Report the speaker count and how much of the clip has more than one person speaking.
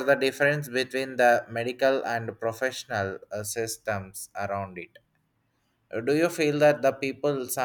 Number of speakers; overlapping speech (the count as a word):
one, no overlap